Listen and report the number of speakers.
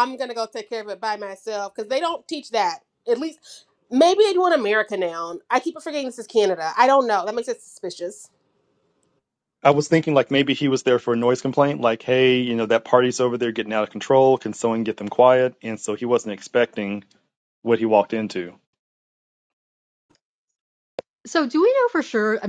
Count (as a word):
three